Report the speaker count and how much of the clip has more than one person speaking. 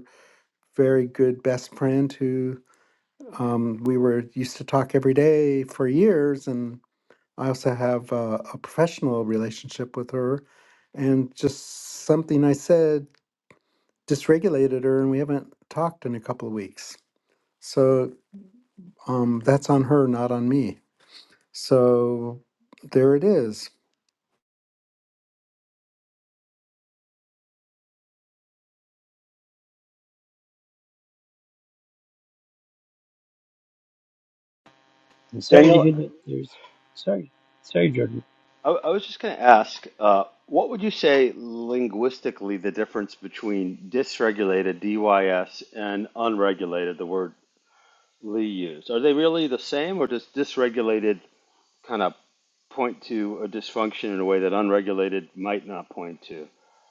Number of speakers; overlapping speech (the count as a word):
three, about 1%